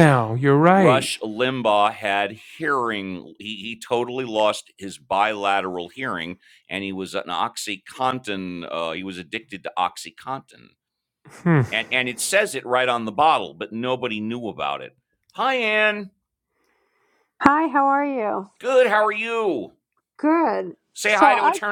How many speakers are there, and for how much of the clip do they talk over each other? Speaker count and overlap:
3, about 3%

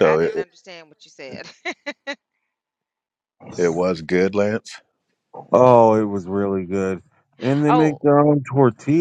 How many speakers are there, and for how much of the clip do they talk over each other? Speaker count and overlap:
3, about 9%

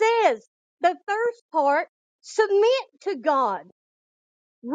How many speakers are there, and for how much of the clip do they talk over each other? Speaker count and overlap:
1, no overlap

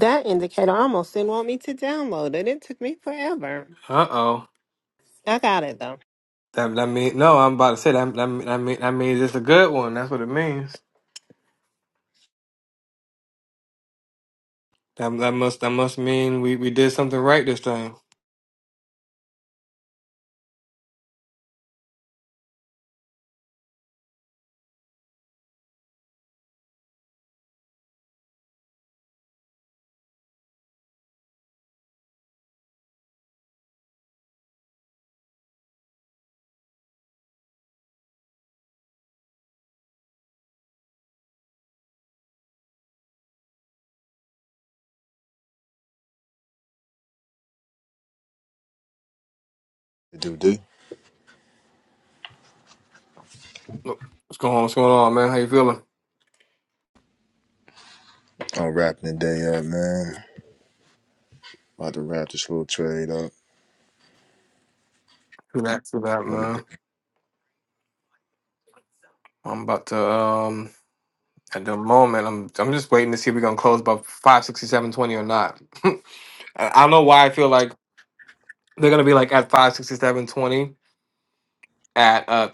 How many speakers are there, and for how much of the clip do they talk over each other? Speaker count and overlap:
3, under 1%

